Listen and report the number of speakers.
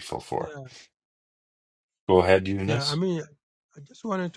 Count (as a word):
two